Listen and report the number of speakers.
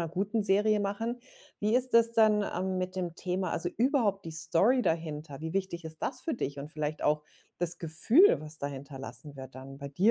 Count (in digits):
1